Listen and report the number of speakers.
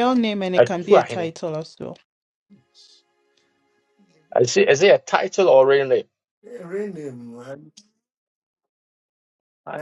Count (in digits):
3